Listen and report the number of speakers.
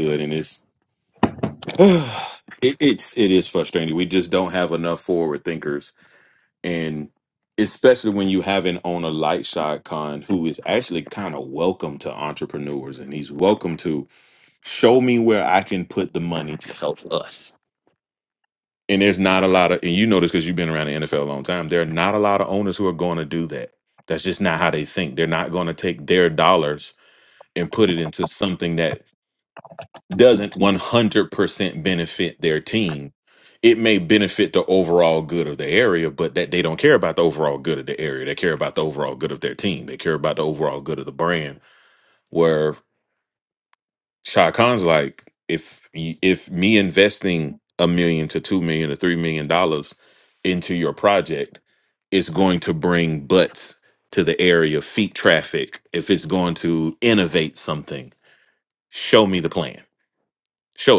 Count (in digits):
1